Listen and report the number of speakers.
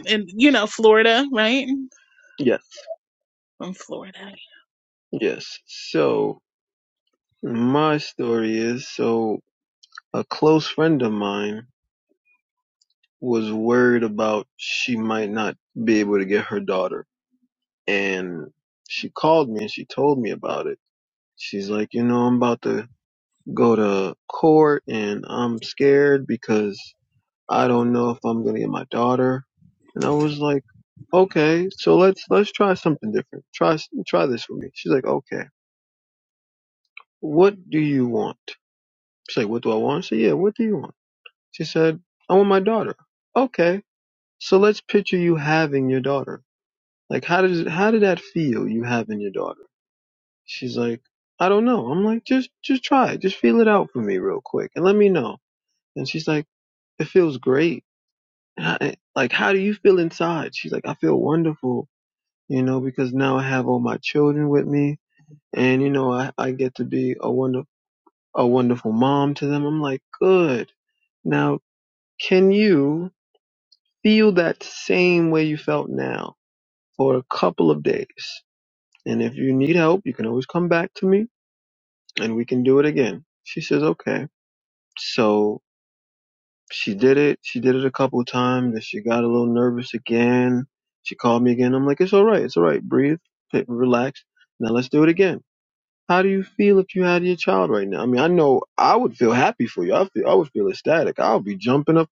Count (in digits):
2